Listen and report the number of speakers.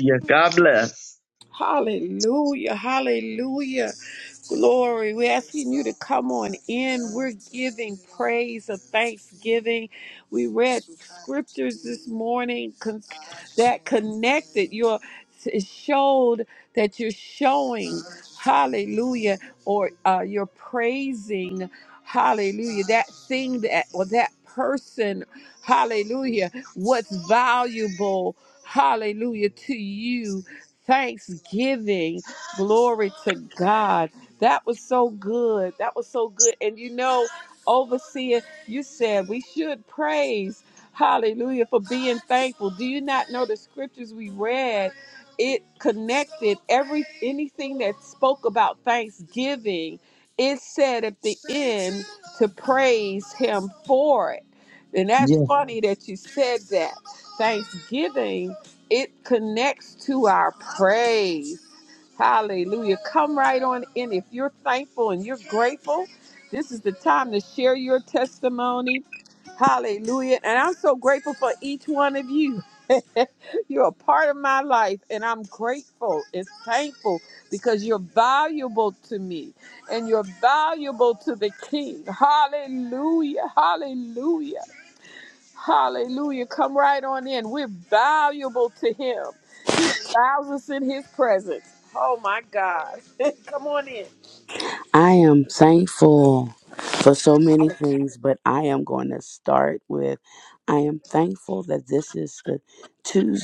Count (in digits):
3